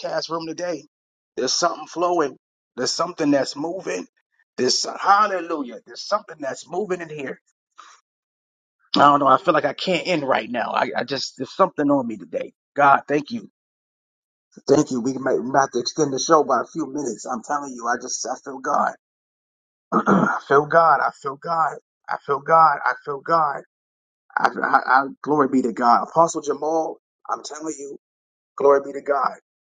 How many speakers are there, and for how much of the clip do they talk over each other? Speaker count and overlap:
1, no overlap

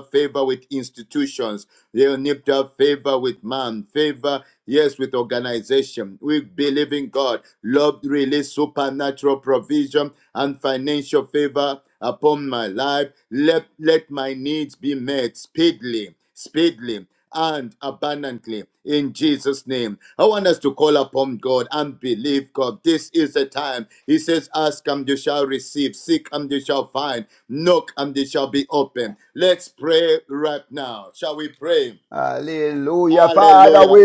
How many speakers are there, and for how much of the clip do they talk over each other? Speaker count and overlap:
2, about 3%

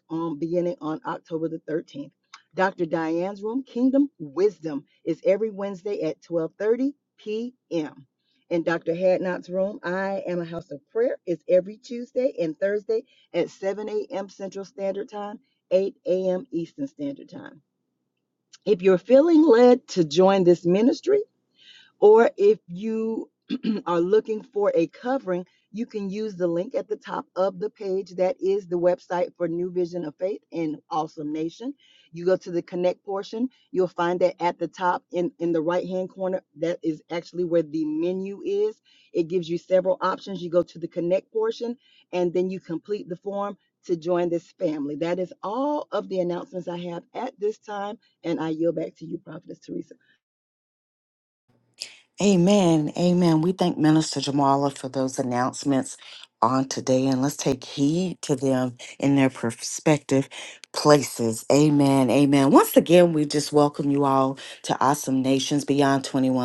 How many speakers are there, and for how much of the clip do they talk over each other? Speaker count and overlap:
2, no overlap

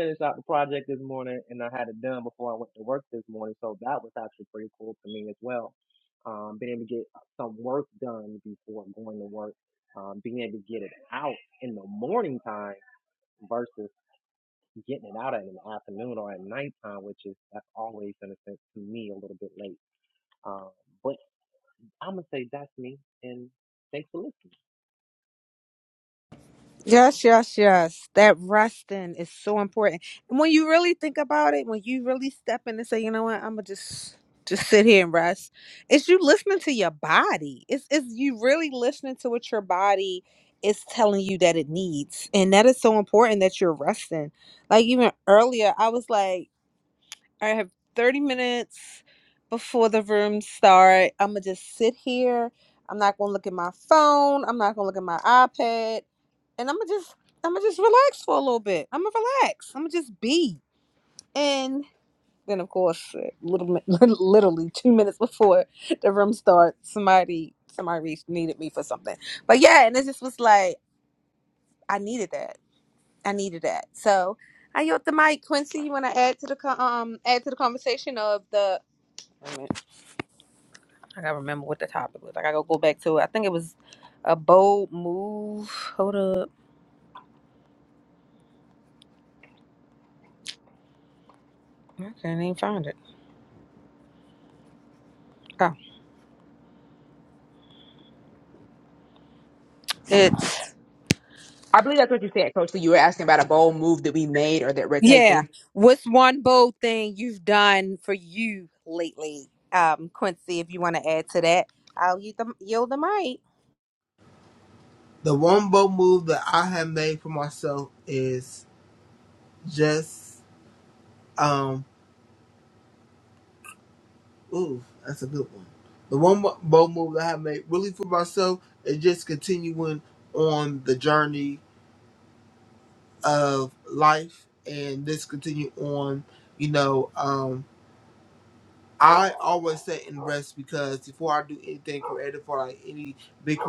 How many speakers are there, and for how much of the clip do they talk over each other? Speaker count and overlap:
4, under 1%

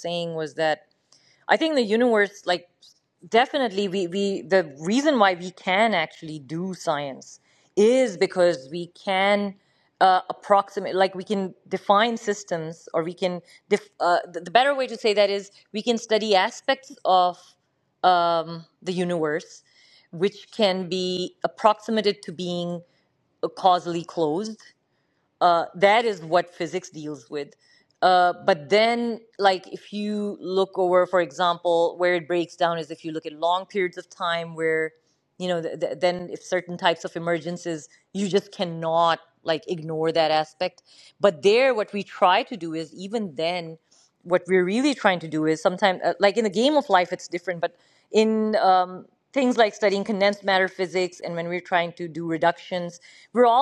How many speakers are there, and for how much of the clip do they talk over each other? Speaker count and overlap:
1, no overlap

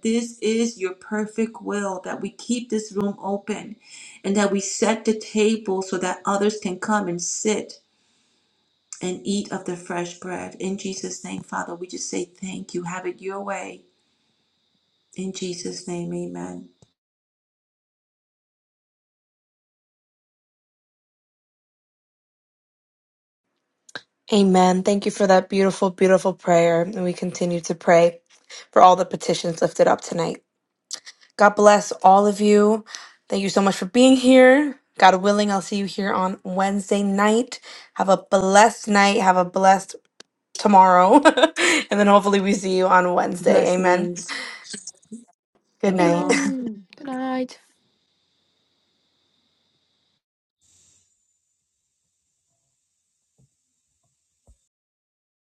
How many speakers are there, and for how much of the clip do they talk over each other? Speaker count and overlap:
3, about 2%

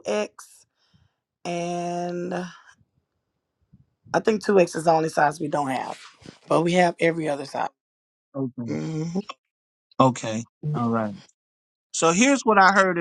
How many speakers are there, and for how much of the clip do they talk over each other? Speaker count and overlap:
2, under 1%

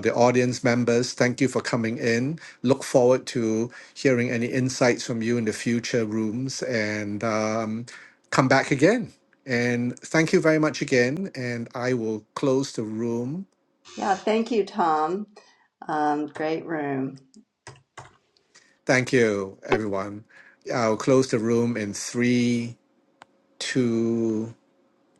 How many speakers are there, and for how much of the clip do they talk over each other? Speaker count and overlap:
2, no overlap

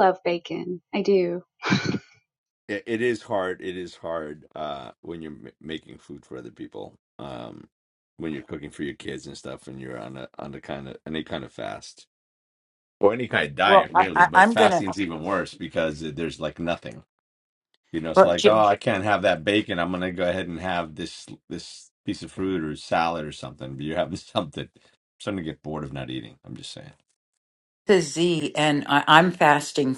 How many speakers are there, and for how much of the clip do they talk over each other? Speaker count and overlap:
3, about 5%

